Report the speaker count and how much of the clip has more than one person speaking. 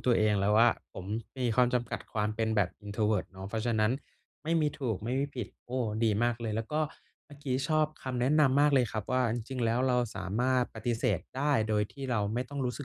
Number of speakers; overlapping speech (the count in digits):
1, no overlap